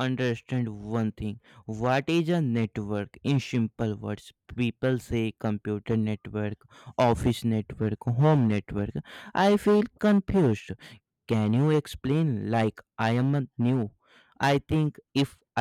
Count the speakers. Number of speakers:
one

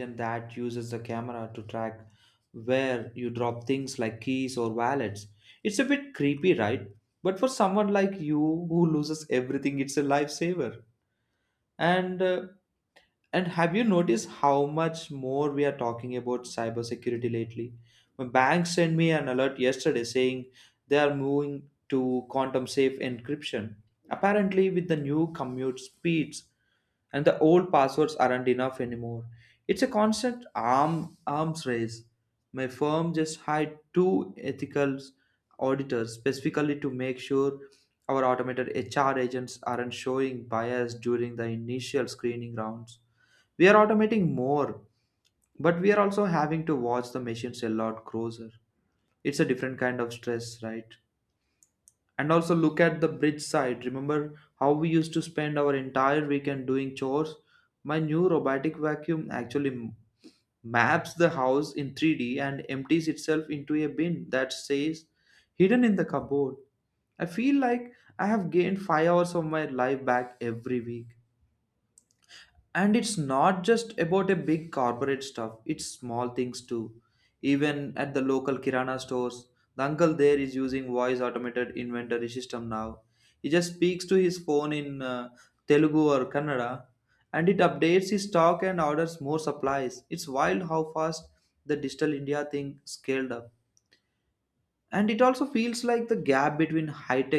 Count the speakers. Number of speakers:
one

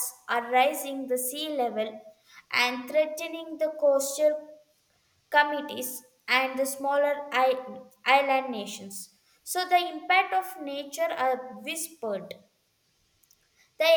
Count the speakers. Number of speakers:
one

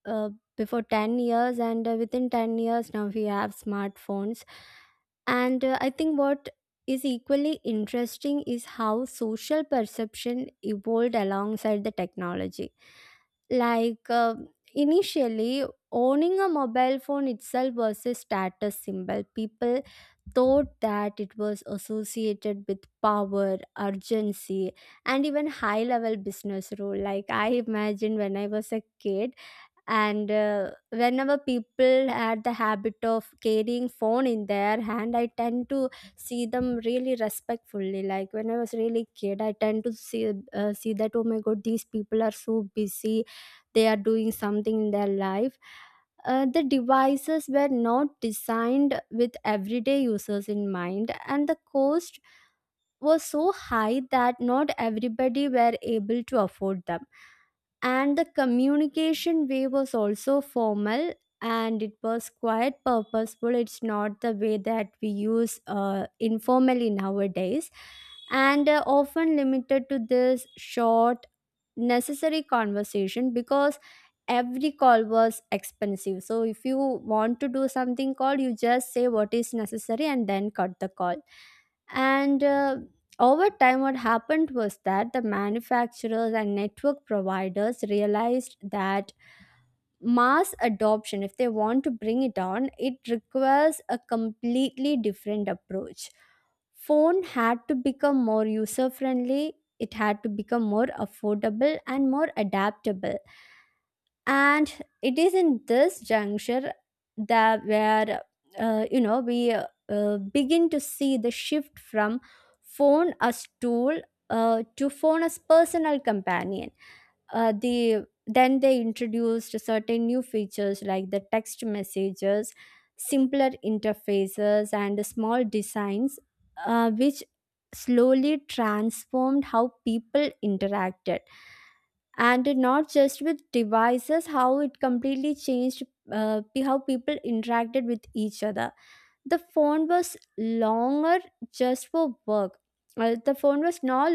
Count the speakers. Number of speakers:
one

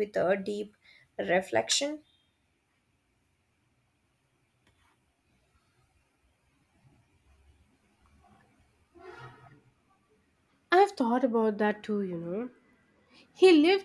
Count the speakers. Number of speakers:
two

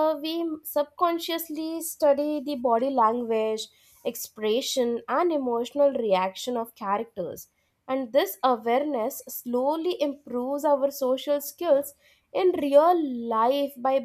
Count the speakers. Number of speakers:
one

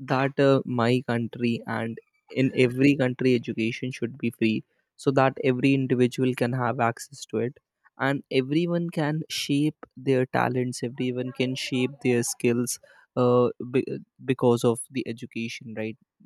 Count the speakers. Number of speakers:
one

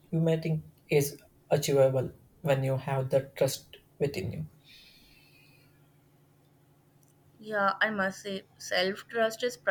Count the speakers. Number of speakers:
two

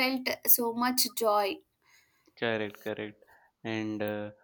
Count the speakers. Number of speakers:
two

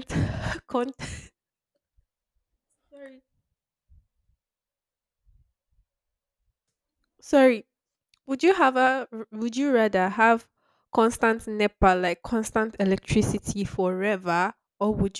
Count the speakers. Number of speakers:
one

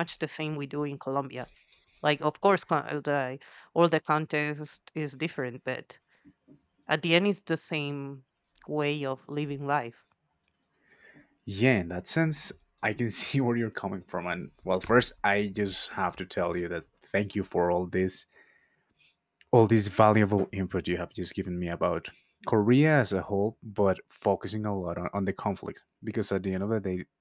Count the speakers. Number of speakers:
two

